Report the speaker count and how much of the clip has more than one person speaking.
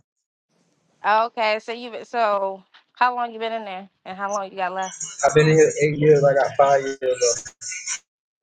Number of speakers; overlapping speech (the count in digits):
2, no overlap